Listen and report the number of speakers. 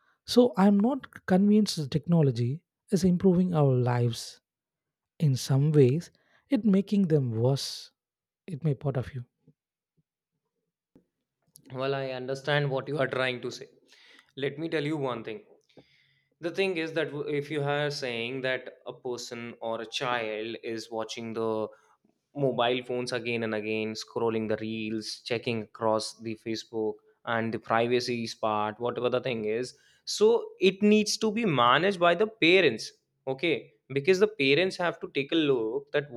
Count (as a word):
two